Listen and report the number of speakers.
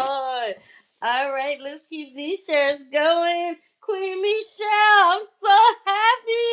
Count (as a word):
one